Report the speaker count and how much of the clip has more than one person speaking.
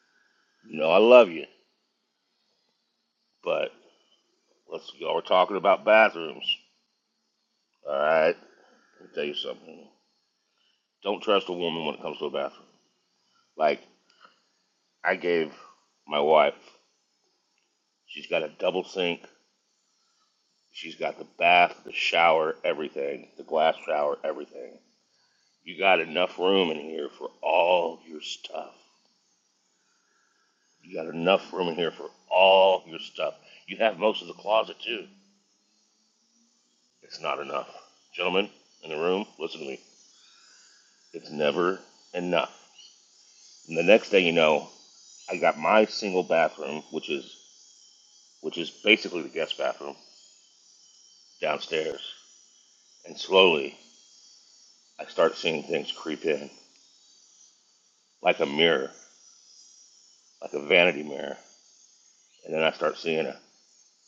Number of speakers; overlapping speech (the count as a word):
one, no overlap